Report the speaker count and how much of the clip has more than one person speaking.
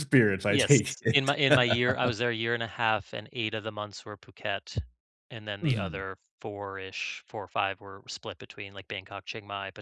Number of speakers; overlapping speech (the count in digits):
2, about 9%